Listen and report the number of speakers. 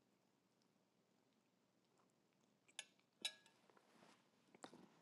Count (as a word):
zero